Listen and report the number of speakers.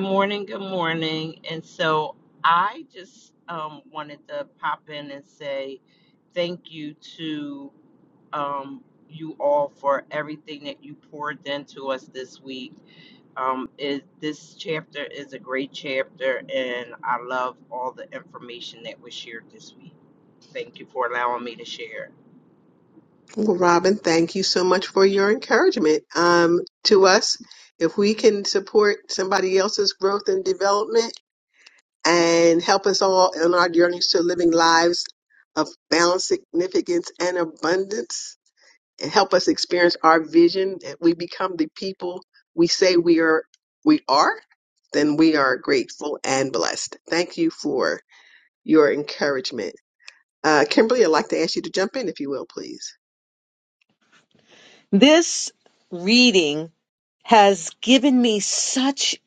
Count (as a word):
three